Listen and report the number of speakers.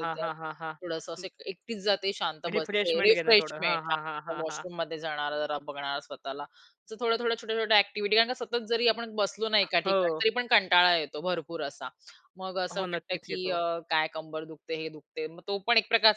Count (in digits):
2